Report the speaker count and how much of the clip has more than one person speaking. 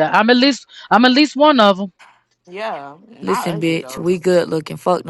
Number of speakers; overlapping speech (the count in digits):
3, about 16%